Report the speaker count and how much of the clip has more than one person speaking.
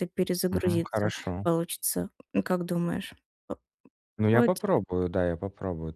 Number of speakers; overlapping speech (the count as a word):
two, about 14%